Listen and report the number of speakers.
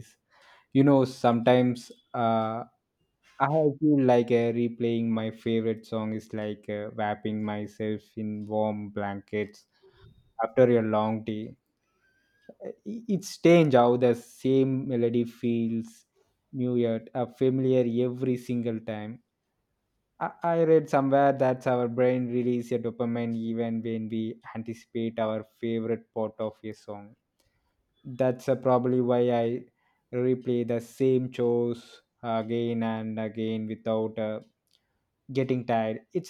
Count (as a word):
one